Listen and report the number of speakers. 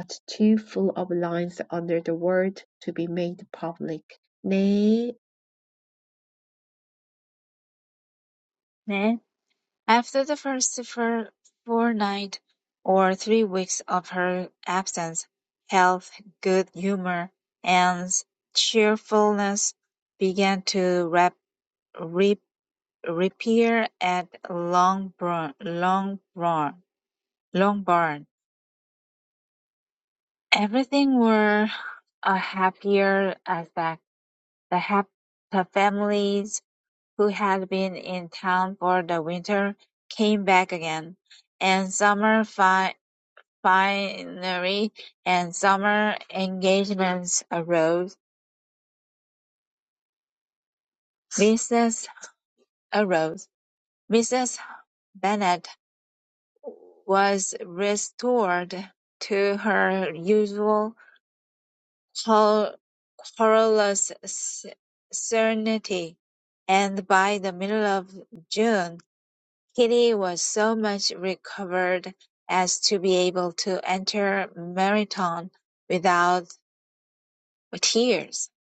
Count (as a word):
two